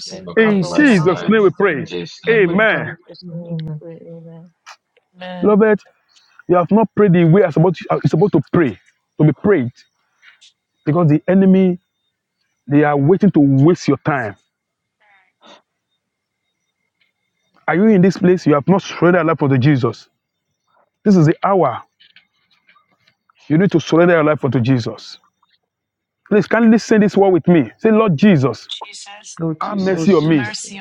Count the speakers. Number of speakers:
4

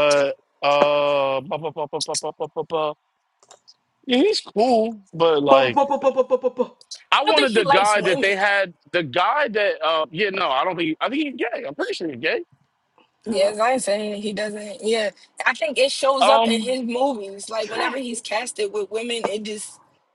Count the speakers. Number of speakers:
3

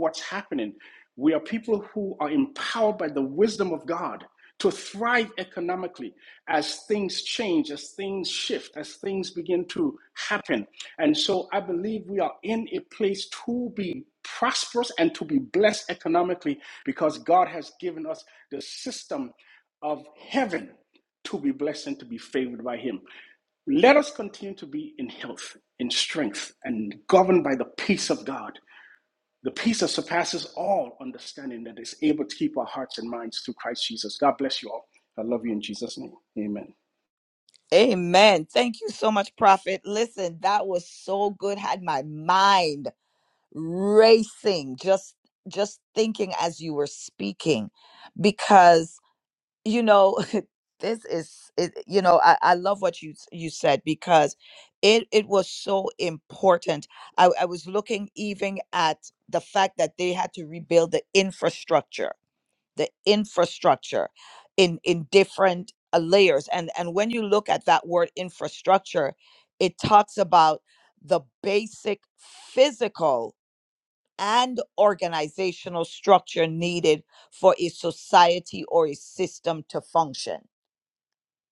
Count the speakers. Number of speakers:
2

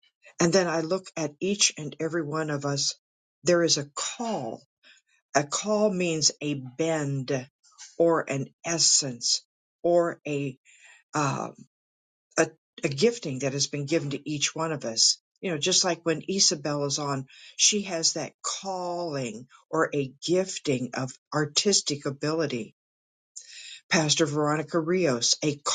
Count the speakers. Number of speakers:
1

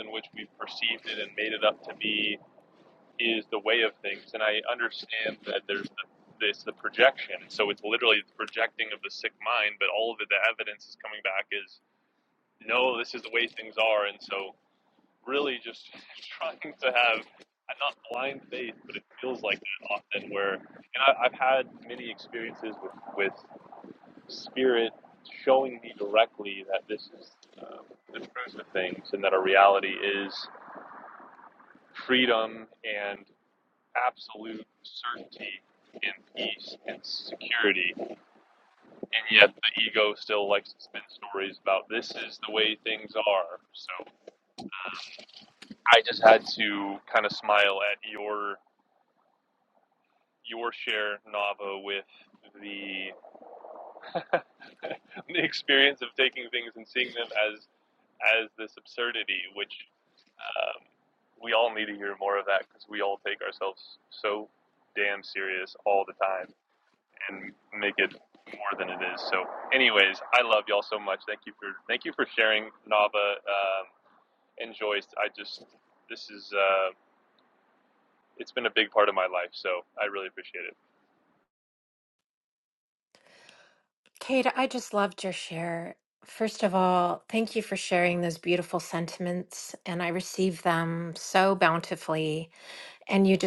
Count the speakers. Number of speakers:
2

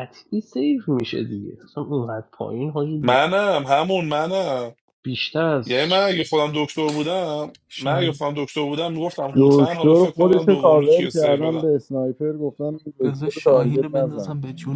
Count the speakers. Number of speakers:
4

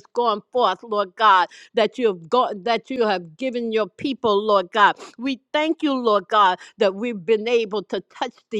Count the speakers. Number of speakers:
1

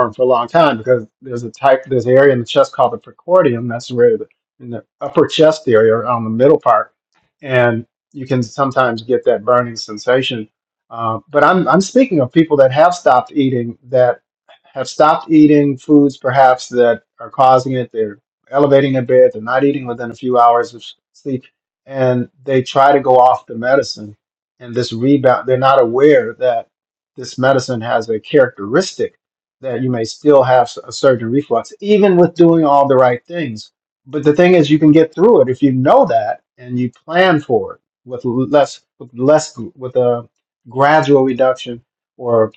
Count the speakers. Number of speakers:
1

